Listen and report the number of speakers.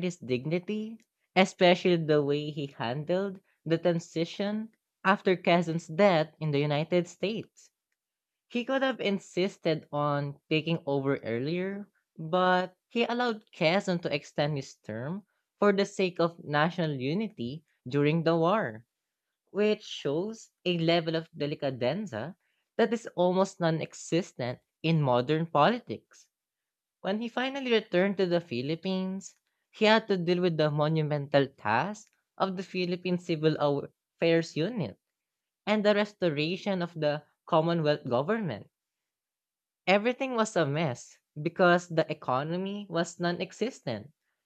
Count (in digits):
1